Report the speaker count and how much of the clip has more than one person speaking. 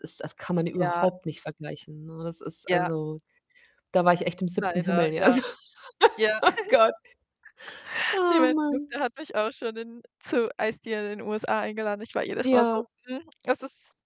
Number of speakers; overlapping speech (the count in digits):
2, about 13%